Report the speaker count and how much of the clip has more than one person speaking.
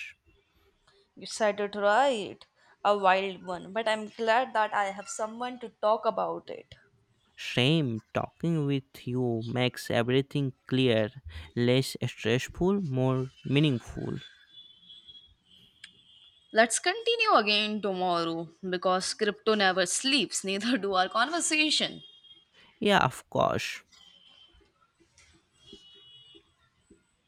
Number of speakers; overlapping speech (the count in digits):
2, no overlap